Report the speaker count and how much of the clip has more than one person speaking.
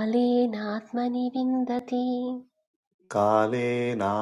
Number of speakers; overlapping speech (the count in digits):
2, no overlap